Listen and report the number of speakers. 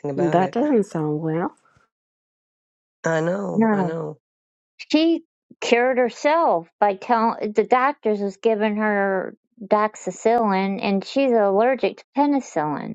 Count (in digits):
3